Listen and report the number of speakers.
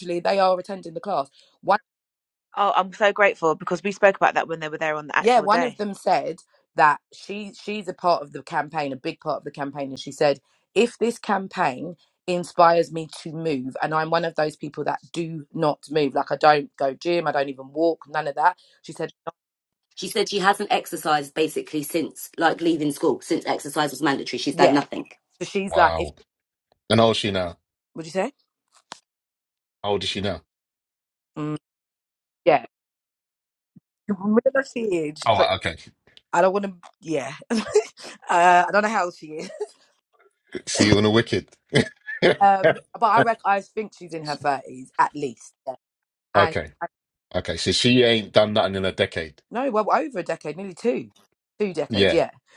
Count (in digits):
4